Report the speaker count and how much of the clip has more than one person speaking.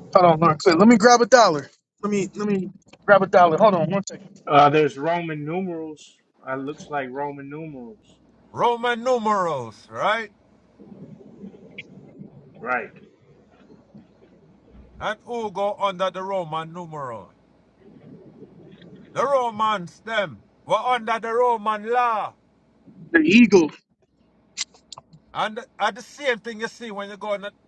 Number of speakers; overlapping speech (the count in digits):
3, no overlap